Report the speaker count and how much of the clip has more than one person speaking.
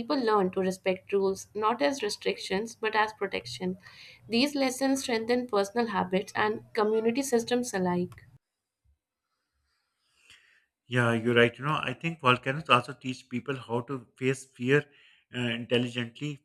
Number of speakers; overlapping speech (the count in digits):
2, no overlap